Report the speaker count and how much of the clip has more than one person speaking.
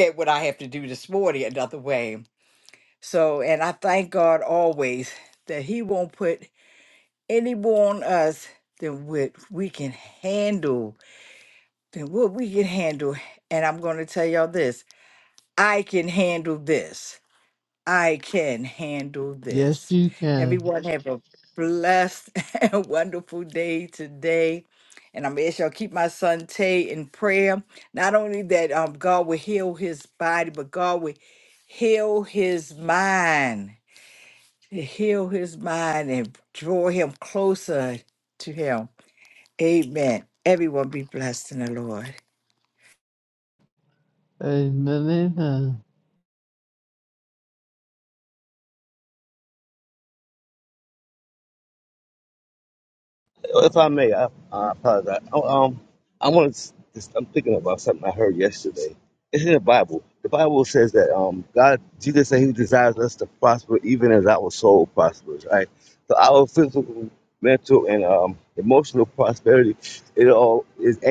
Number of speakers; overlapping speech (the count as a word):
three, about 1%